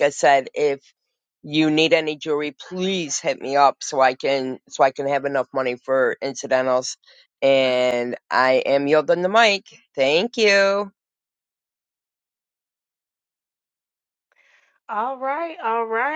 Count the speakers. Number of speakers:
two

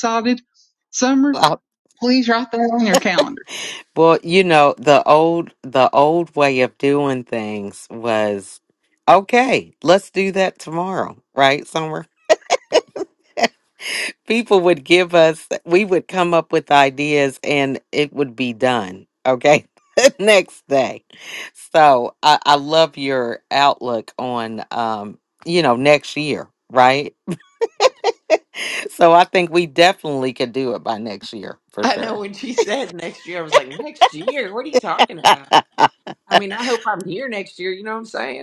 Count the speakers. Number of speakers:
three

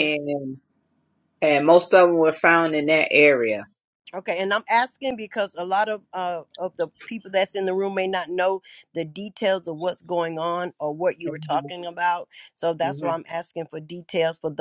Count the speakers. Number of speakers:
two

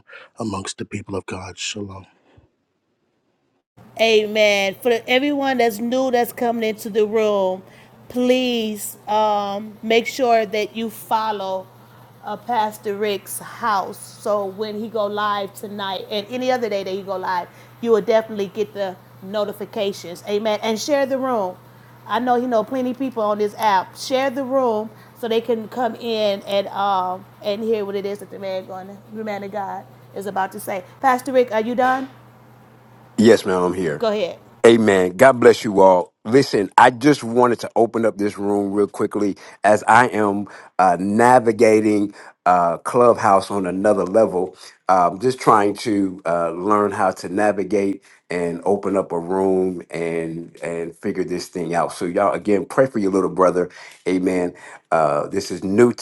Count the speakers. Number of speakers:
three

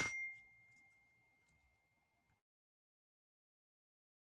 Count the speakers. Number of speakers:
zero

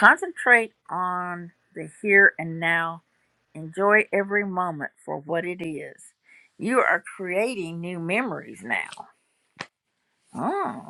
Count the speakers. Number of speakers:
one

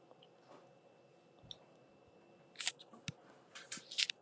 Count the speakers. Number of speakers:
zero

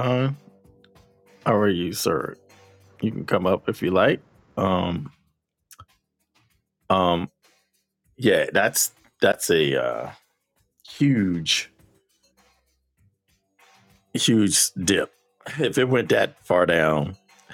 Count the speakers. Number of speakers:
one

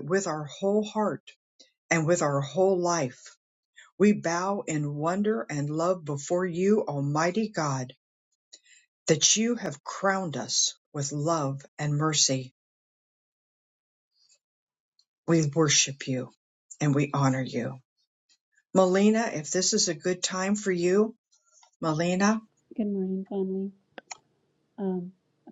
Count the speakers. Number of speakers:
two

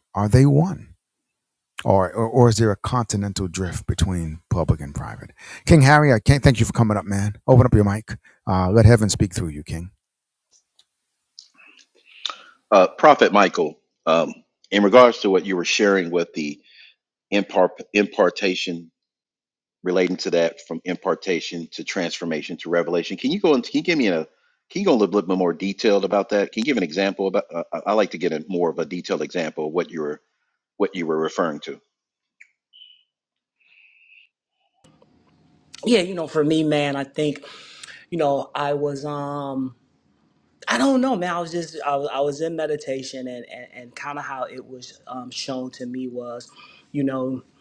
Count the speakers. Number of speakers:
three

